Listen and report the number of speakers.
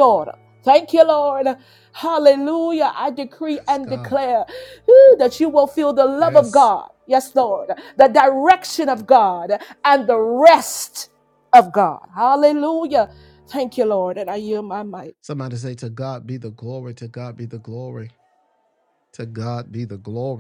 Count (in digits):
2